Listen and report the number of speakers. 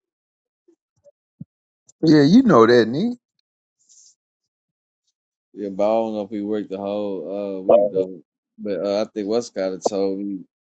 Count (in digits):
2